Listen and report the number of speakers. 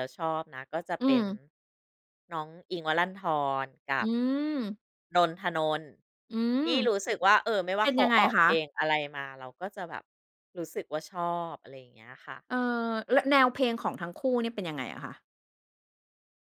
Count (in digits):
2